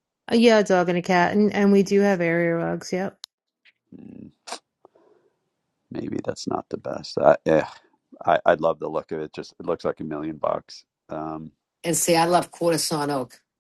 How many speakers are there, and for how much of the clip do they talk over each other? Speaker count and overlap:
3, no overlap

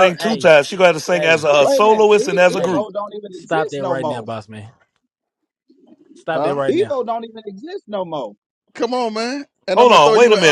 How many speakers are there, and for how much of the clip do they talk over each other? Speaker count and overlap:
4, about 39%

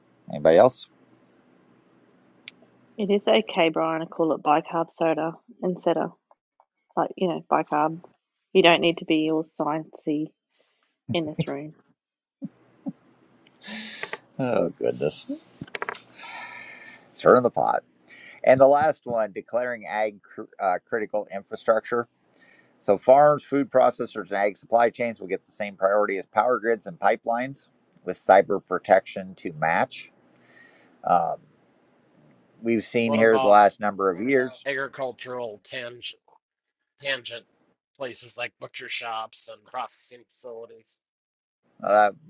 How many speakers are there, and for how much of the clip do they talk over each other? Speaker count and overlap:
3, about 1%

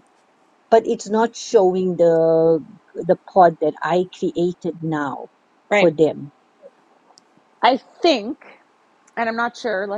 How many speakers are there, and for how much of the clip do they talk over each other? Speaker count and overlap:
2, about 1%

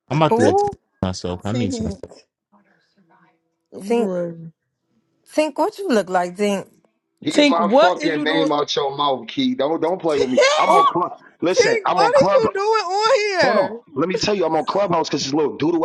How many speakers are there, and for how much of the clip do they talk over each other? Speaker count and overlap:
4, about 26%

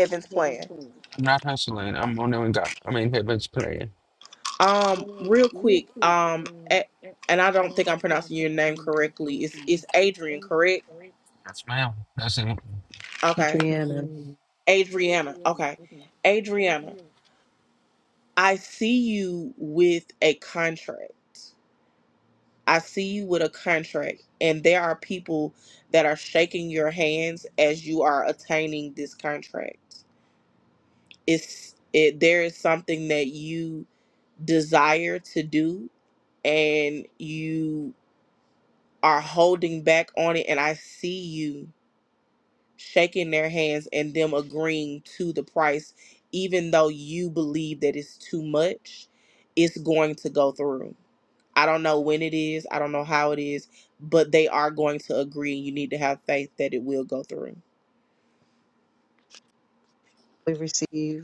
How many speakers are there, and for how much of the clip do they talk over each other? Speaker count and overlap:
3, under 1%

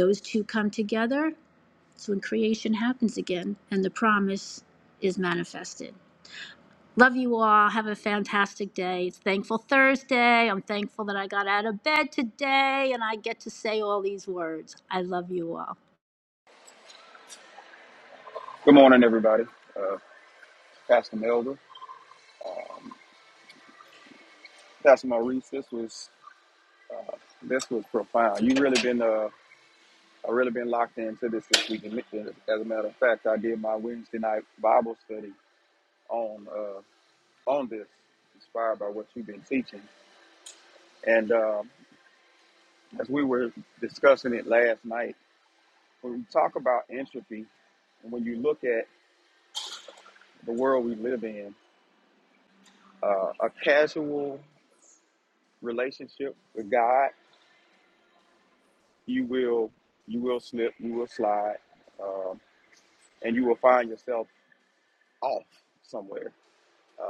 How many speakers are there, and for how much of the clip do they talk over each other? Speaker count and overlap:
2, no overlap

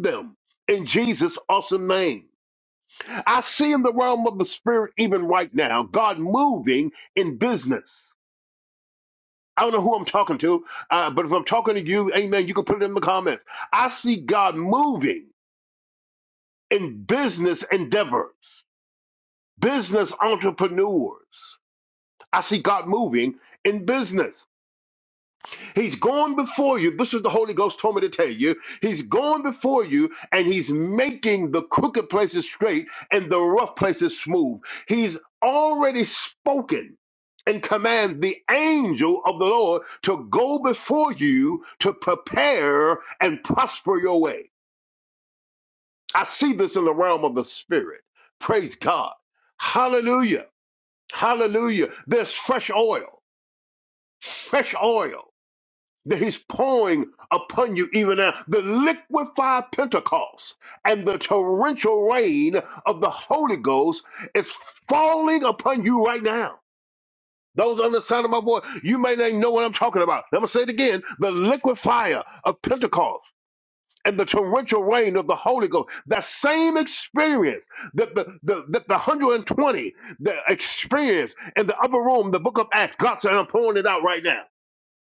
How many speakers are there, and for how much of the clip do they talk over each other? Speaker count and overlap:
1, no overlap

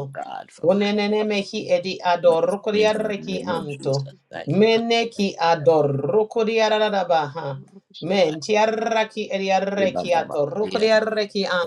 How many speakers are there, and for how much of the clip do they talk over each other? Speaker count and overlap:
2, about 27%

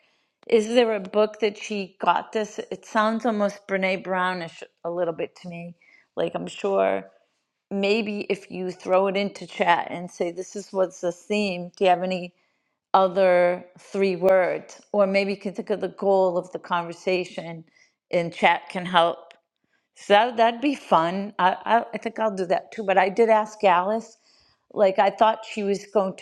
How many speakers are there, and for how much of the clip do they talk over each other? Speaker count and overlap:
1, no overlap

